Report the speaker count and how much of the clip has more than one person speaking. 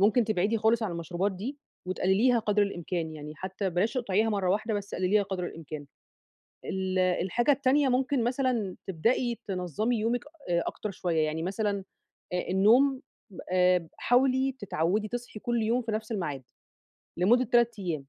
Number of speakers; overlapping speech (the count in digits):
1, no overlap